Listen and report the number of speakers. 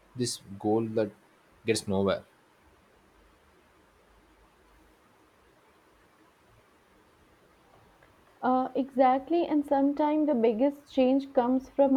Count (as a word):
two